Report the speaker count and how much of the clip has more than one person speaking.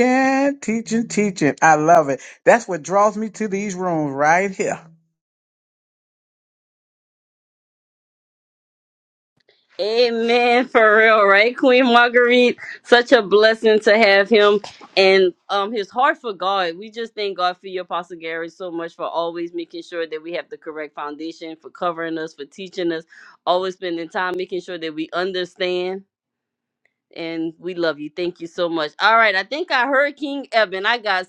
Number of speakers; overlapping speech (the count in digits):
2, no overlap